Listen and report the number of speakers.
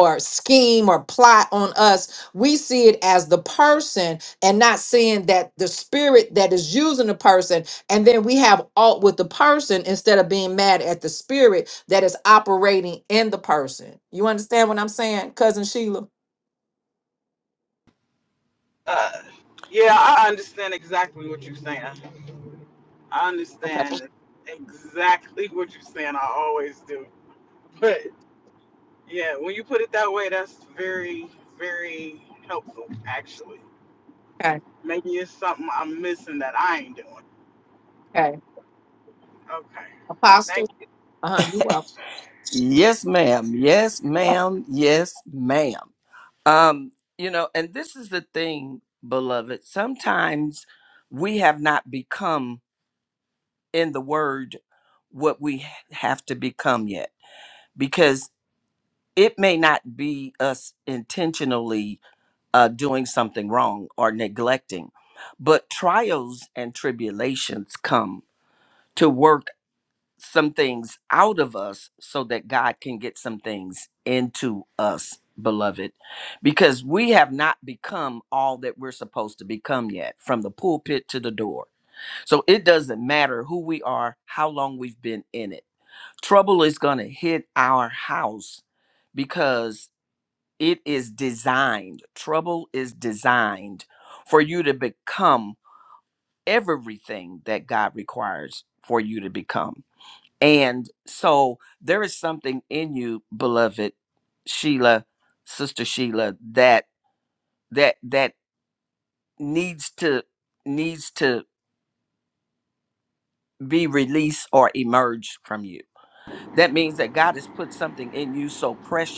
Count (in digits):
3